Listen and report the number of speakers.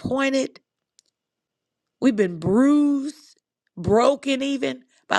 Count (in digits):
1